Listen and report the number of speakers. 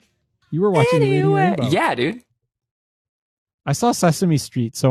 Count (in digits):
2